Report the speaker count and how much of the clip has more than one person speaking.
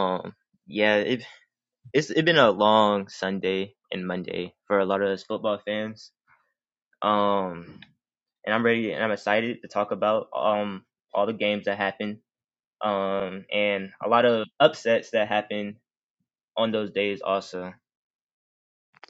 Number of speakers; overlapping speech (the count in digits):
1, no overlap